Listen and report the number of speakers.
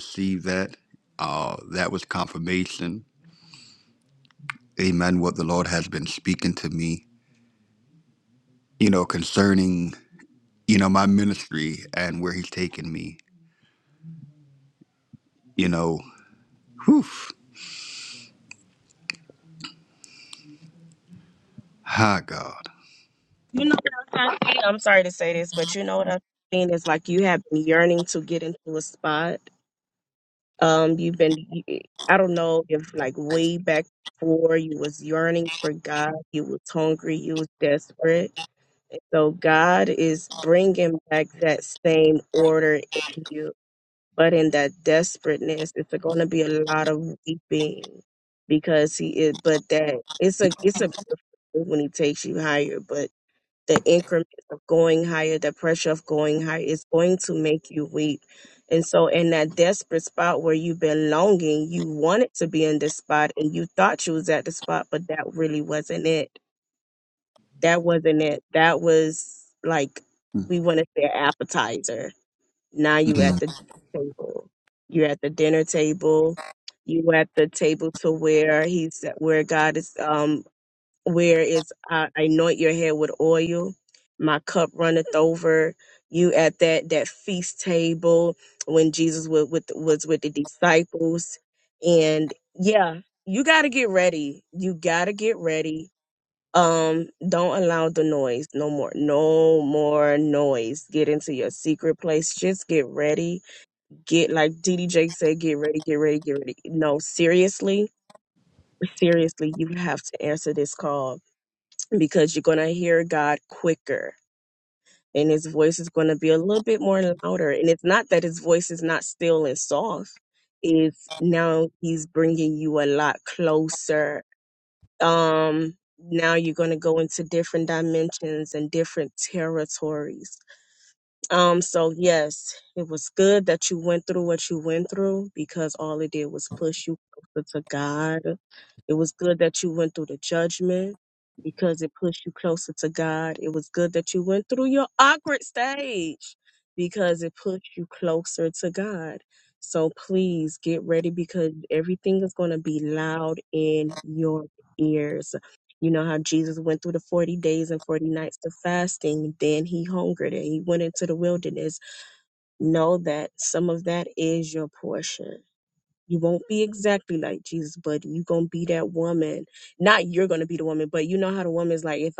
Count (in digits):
2